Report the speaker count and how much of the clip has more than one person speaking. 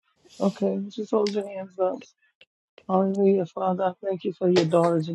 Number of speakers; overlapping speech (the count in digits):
1, no overlap